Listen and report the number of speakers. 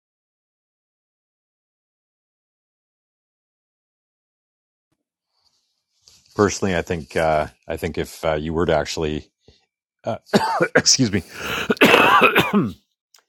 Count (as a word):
one